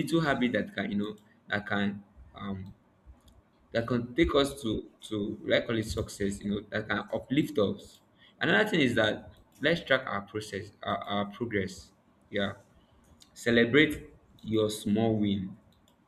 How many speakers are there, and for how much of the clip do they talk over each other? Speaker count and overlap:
one, no overlap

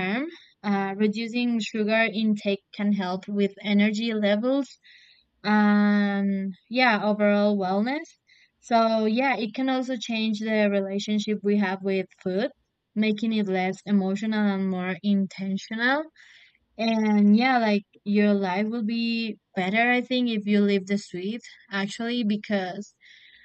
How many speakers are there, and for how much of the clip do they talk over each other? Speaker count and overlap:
one, no overlap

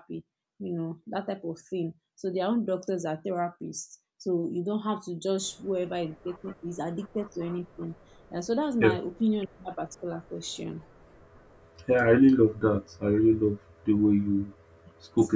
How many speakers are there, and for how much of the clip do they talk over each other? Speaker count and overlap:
two, about 1%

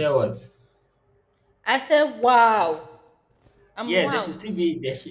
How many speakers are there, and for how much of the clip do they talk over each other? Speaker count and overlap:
two, about 11%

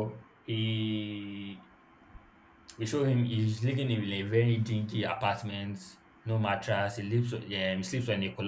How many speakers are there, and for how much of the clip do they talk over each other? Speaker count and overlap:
one, no overlap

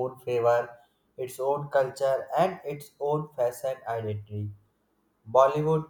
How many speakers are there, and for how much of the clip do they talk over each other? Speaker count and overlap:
one, no overlap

